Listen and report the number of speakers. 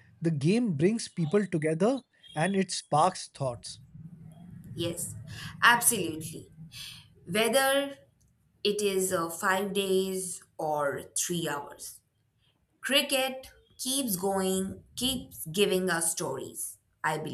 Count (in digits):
2